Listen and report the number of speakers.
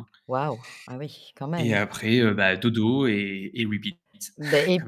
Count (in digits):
2